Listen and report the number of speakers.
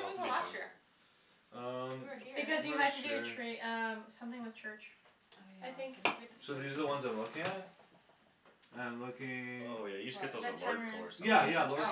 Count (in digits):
4